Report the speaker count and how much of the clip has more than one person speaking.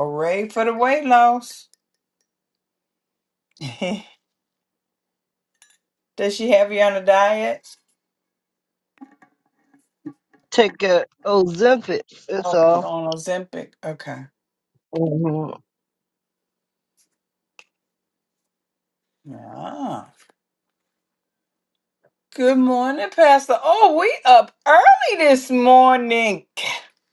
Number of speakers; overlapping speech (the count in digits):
2, about 2%